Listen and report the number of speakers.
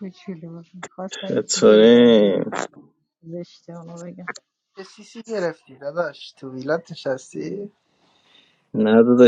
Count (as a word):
three